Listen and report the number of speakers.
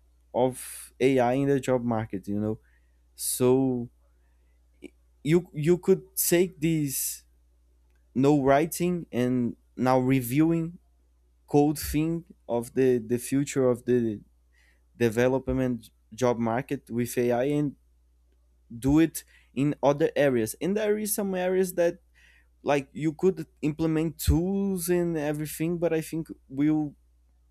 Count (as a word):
one